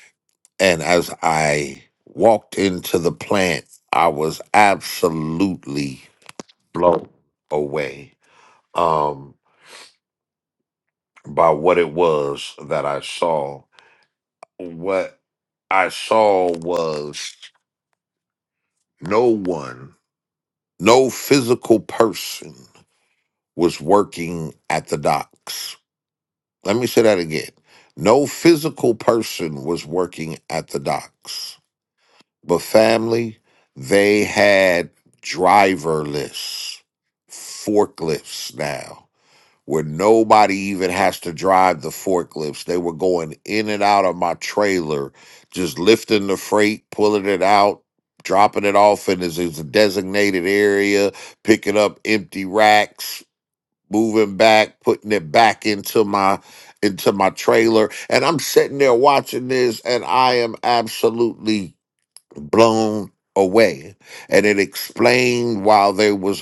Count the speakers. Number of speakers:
1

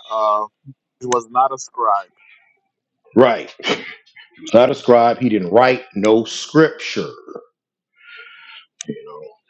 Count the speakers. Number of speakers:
2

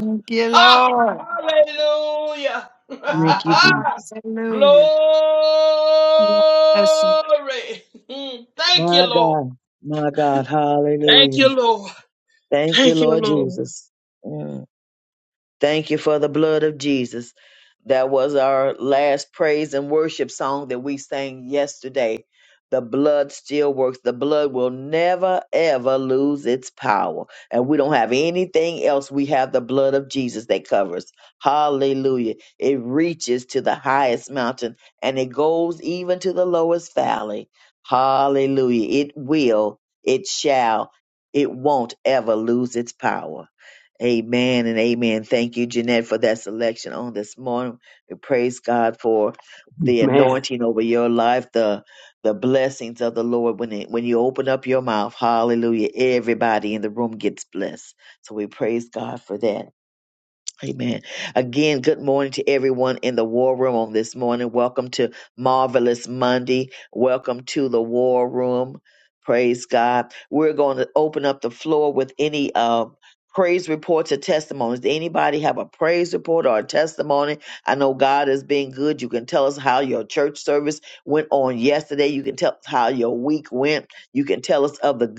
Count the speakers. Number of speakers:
3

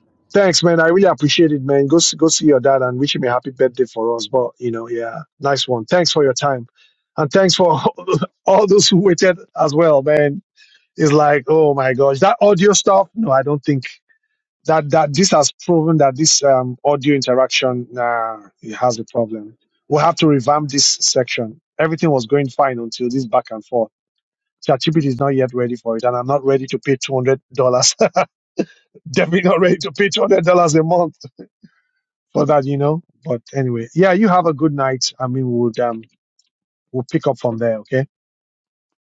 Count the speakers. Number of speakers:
1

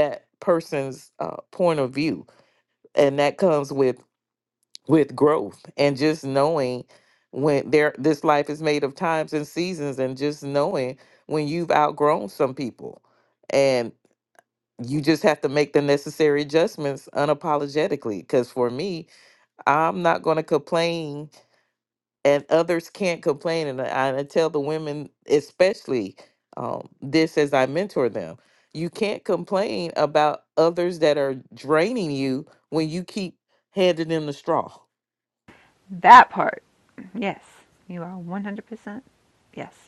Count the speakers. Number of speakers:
2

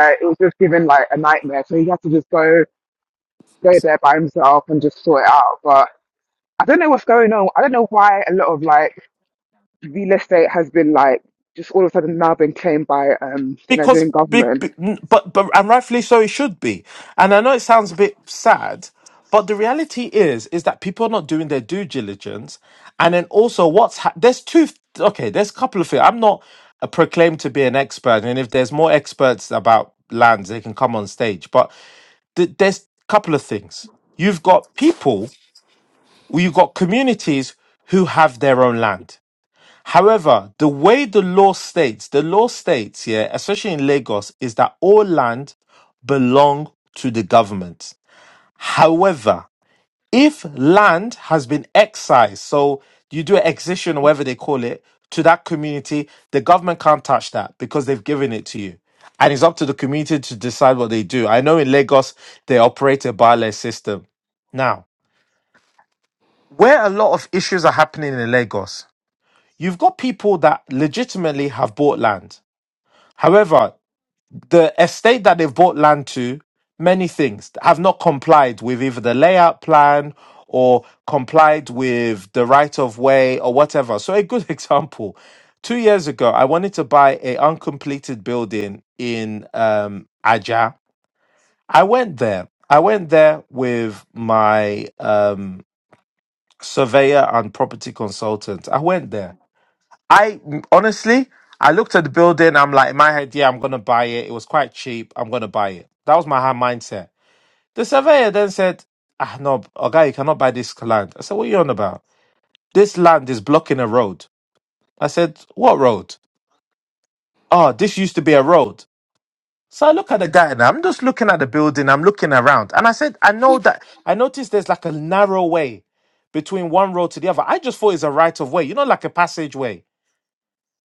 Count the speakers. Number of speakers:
2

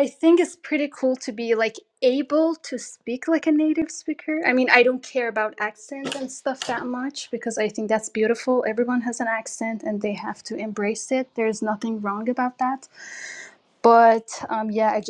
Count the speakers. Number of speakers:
1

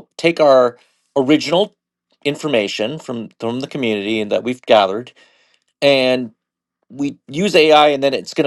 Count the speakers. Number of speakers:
1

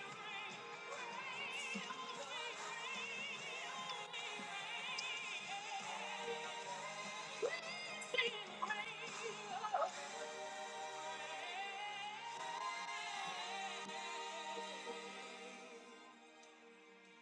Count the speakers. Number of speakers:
0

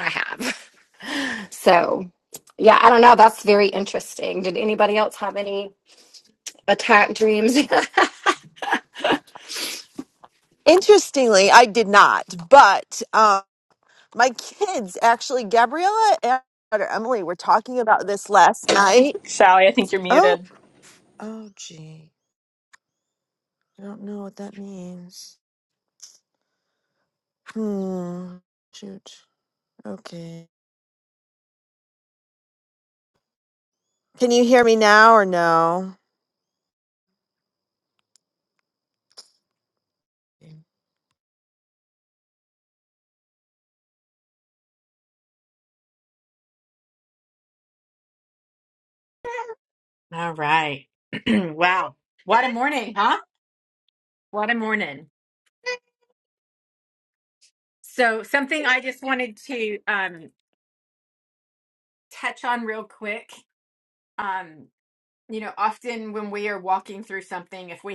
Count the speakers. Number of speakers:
4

